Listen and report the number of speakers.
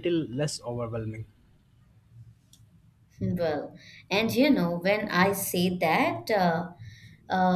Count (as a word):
two